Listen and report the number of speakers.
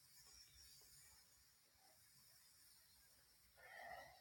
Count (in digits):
0